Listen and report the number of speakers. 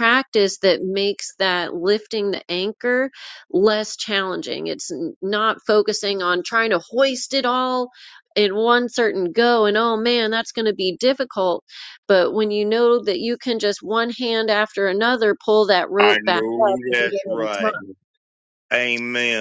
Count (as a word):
two